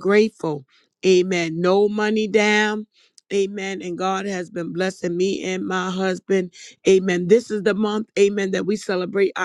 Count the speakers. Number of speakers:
one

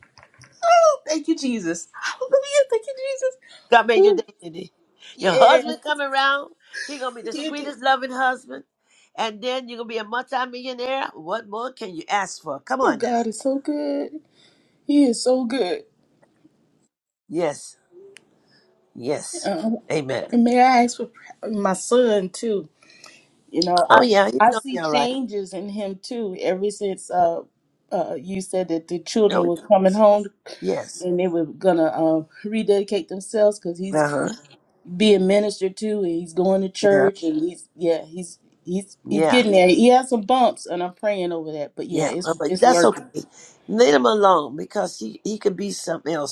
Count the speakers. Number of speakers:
two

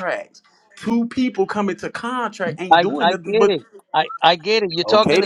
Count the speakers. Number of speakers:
two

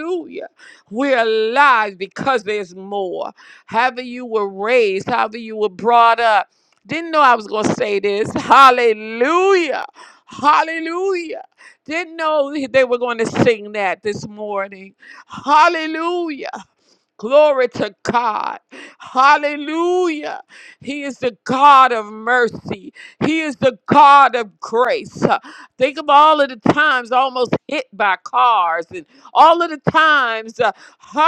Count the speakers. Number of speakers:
one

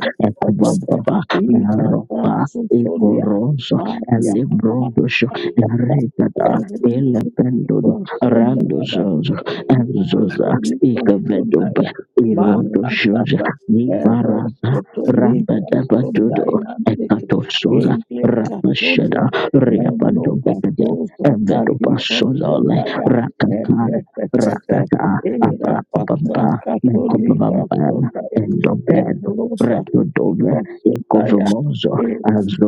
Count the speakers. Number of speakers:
two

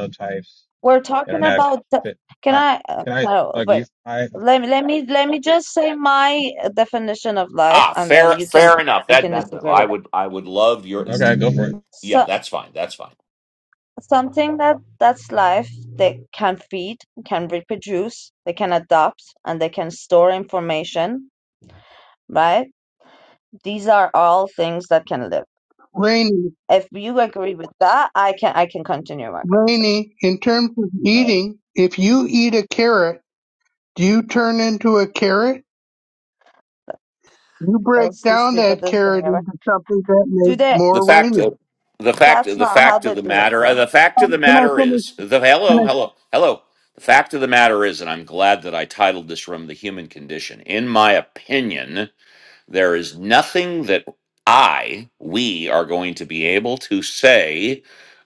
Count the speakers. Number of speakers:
four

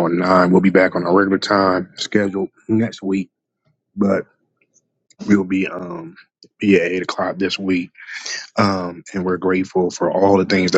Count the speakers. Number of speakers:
one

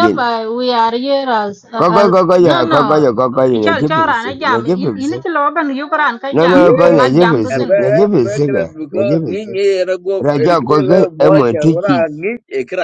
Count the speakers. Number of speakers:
three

